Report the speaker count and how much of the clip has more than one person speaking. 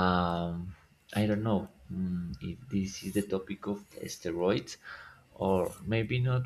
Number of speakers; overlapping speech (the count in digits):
1, no overlap